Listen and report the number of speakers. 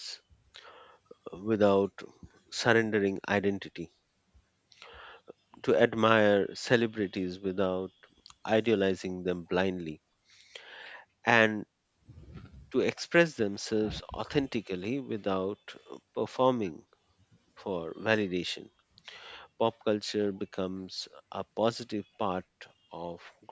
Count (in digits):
1